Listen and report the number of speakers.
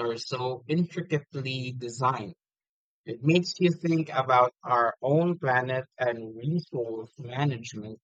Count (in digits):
1